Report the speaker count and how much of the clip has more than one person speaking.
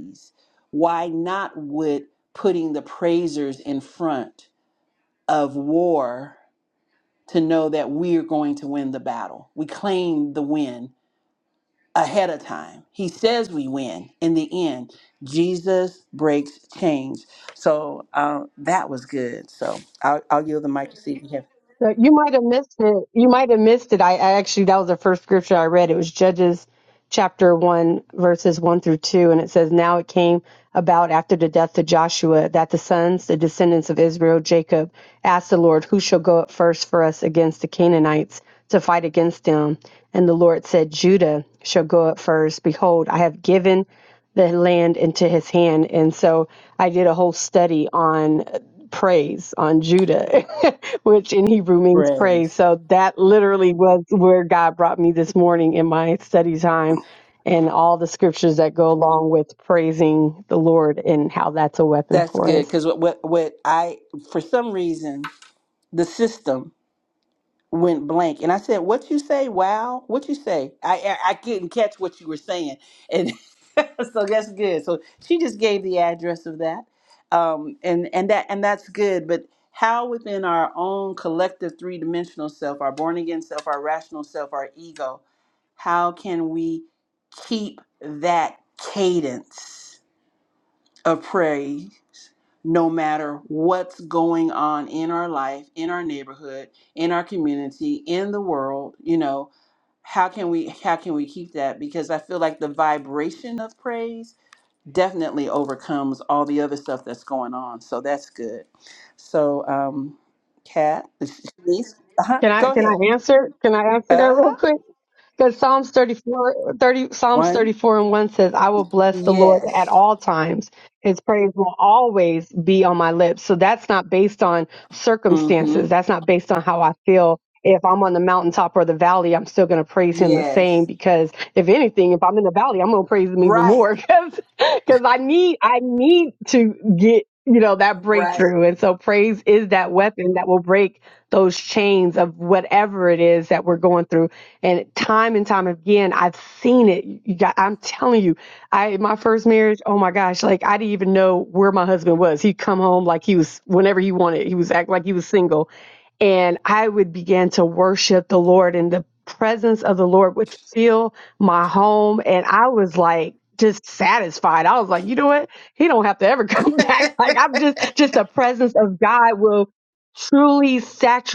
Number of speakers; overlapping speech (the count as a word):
two, about 3%